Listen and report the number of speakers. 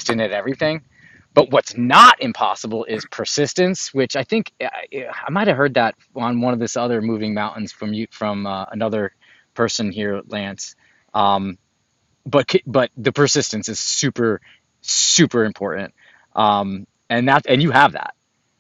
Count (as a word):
one